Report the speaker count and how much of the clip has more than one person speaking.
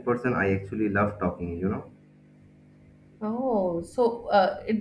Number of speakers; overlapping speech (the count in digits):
2, no overlap